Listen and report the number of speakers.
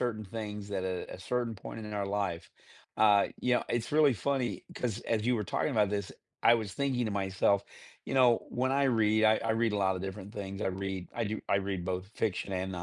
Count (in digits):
1